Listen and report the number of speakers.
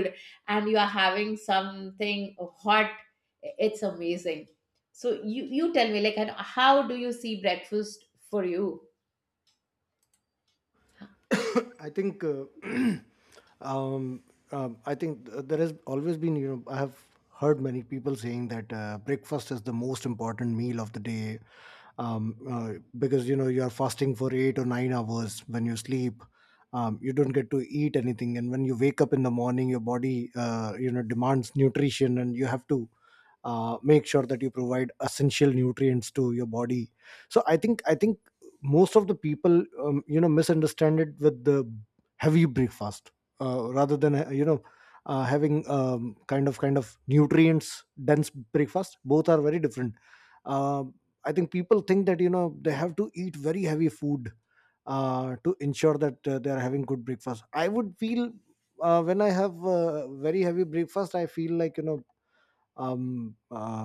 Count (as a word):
two